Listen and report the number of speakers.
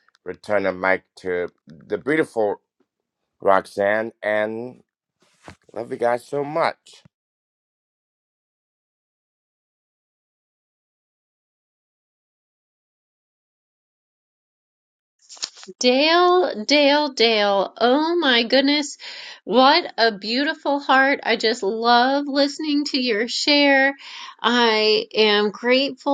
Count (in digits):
2